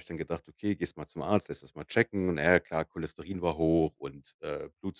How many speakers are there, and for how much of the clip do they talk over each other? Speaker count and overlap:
one, no overlap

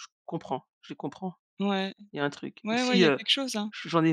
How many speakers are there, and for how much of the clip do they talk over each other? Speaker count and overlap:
two, about 14%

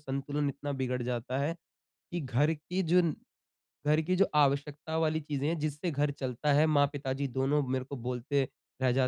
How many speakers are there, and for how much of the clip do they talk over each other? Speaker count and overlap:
one, no overlap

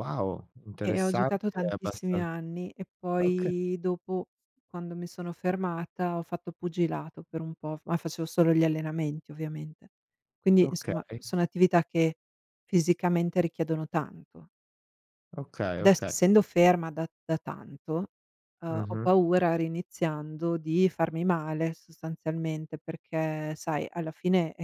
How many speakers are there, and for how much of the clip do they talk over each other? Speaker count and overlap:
two, about 13%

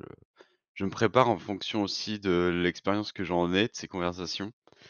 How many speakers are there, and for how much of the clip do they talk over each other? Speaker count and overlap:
one, no overlap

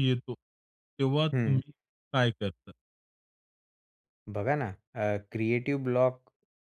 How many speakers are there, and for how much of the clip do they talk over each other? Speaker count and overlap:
two, about 5%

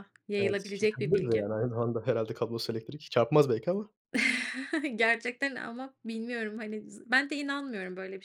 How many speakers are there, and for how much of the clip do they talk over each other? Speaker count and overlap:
two, about 13%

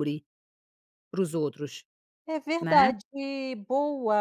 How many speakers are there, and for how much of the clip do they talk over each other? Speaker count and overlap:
two, about 8%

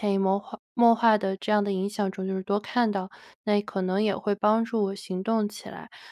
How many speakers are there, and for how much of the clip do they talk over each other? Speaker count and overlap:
one, no overlap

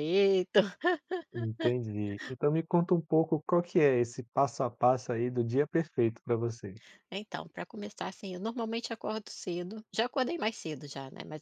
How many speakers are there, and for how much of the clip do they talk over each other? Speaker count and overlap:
two, no overlap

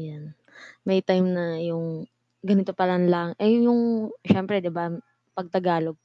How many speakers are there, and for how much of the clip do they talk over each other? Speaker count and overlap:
one, no overlap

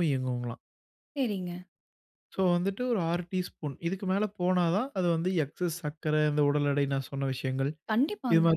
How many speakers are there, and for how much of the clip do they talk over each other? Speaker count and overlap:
two, about 3%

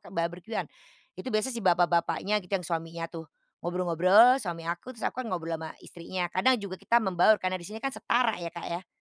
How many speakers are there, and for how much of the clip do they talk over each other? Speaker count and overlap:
one, no overlap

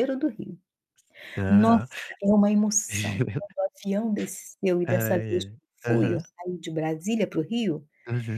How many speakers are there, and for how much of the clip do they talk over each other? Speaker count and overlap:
two, about 15%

